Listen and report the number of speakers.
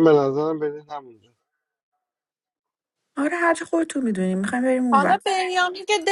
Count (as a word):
three